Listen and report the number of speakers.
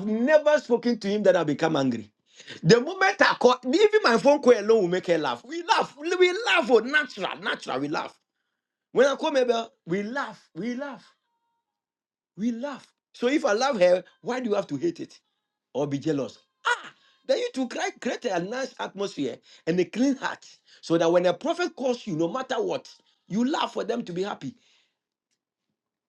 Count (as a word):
one